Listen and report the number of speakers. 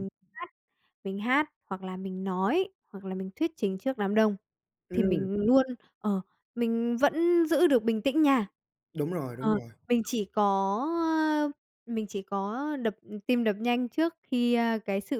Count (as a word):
two